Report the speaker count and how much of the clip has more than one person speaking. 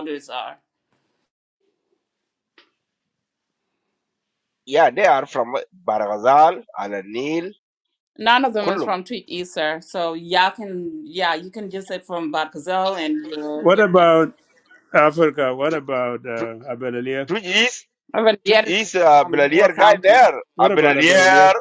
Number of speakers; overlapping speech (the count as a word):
three, about 13%